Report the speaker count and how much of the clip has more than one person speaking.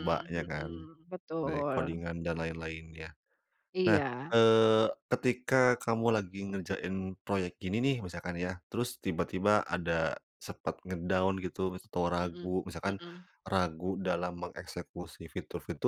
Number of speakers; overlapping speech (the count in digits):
2, about 13%